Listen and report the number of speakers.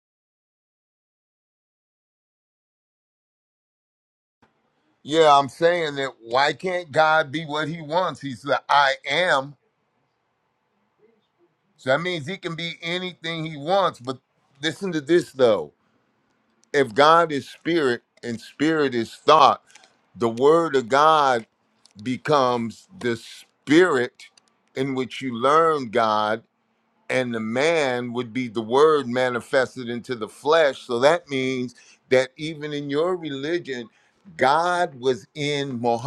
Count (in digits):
1